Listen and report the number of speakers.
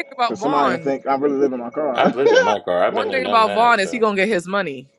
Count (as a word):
three